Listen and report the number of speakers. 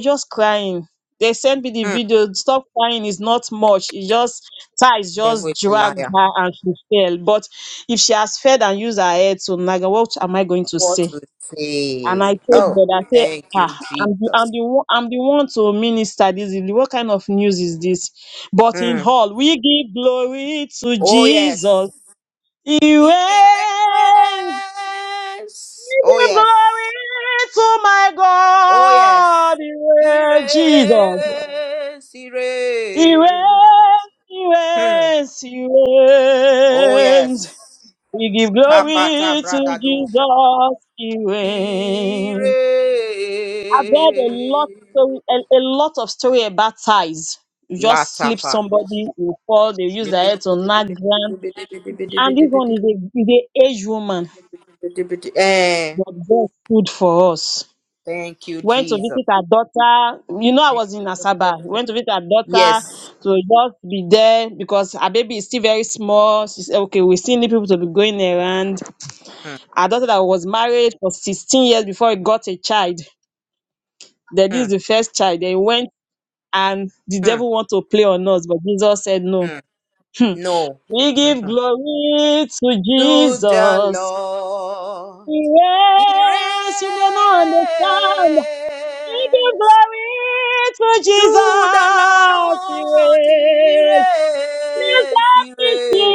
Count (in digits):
2